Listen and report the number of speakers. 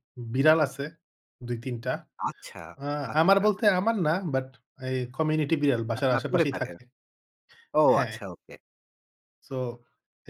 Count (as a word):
two